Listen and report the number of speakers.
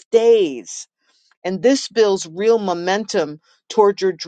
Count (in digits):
1